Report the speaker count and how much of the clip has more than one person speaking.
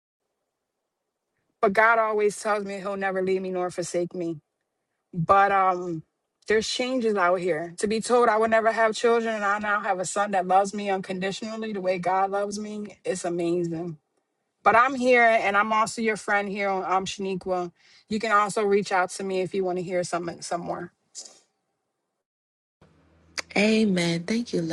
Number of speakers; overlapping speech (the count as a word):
two, no overlap